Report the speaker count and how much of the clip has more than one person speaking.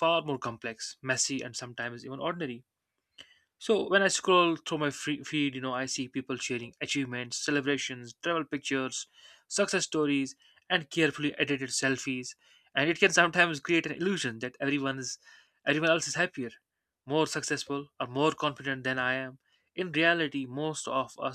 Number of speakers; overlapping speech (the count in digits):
1, no overlap